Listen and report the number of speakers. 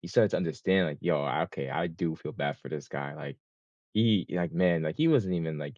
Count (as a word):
one